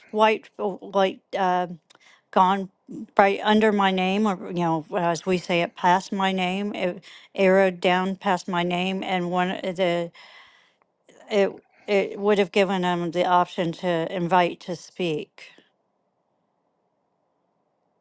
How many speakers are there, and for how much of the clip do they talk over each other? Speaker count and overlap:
one, no overlap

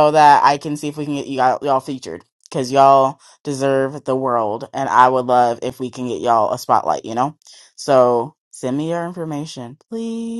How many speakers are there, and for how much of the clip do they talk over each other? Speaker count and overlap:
one, no overlap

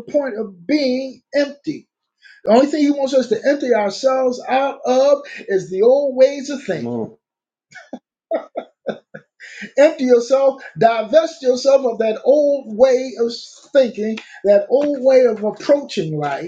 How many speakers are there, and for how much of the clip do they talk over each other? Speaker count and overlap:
one, no overlap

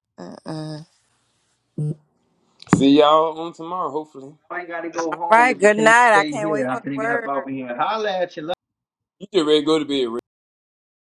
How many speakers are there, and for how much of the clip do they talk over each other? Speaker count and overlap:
three, about 22%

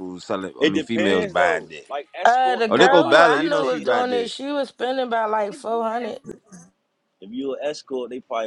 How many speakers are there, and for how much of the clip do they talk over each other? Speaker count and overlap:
three, about 38%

